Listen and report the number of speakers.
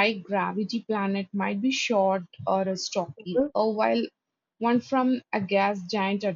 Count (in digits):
1